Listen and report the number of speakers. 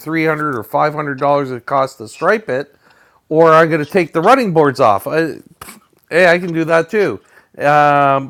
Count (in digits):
1